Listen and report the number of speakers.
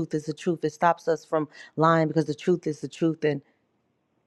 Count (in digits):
1